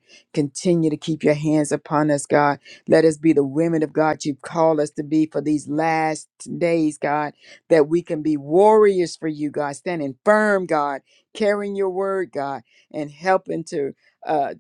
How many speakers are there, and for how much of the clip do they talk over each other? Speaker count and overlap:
one, no overlap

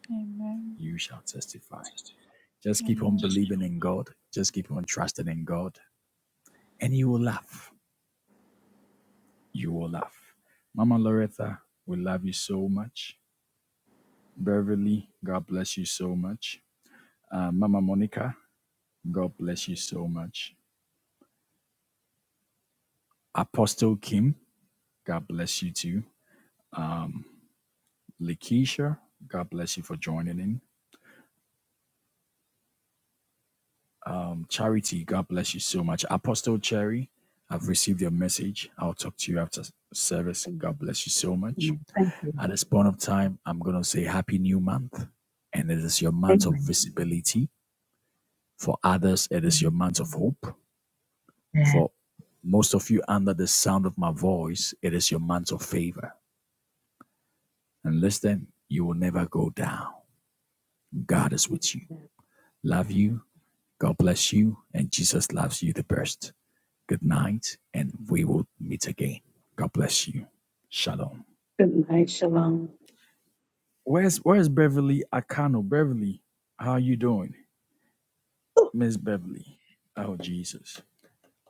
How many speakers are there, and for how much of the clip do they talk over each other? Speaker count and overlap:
three, about 2%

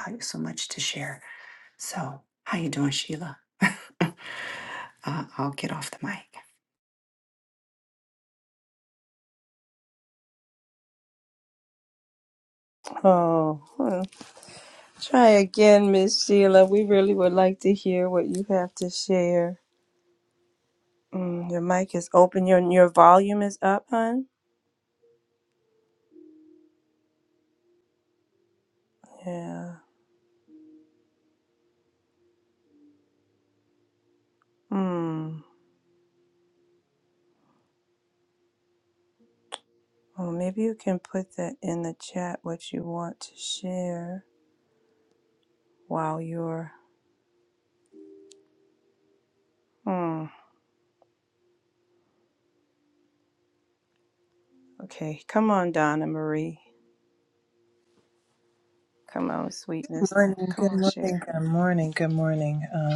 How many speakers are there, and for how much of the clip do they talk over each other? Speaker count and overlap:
three, about 1%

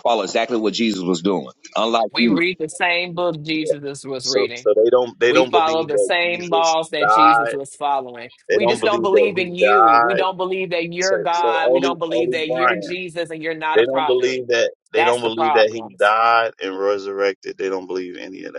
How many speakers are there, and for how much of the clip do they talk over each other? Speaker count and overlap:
three, about 43%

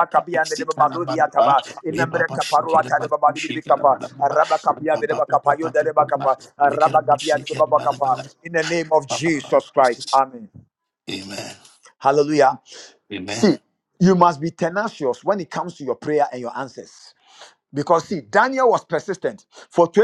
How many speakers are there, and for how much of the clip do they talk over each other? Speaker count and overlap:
two, about 32%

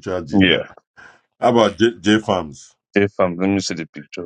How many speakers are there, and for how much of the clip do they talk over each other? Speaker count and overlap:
two, about 7%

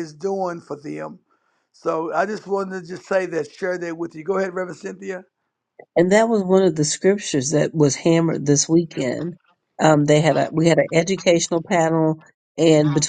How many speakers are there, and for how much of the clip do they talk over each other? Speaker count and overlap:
two, no overlap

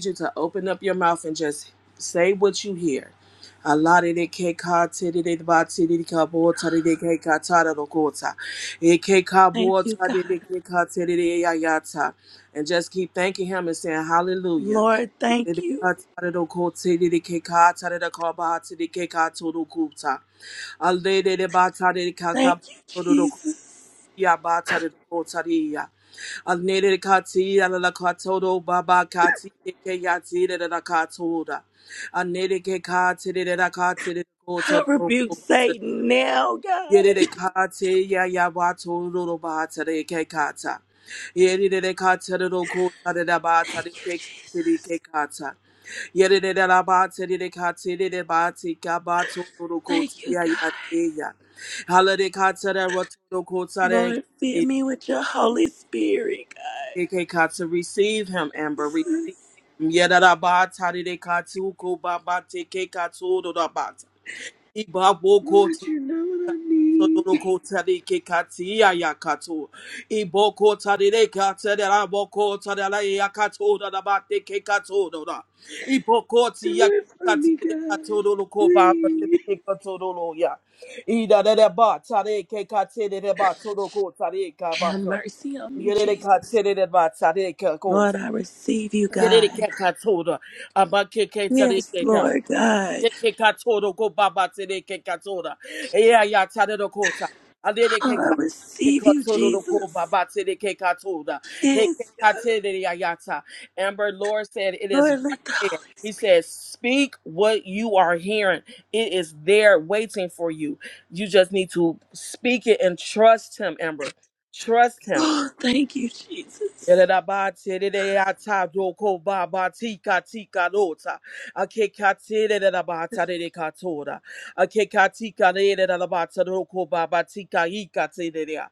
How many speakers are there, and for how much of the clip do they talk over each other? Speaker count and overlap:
two, about 10%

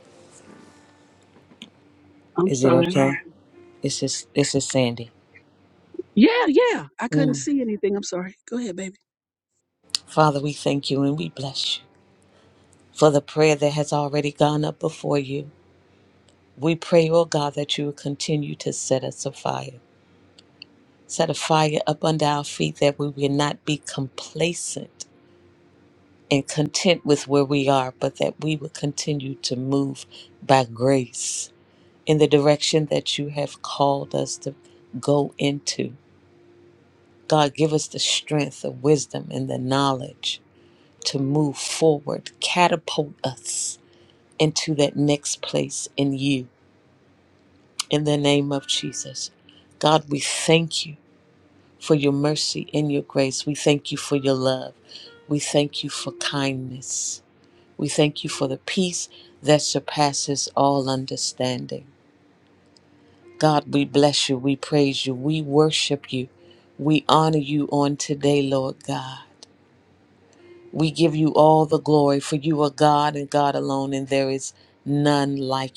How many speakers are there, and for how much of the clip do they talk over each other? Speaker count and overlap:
two, about 1%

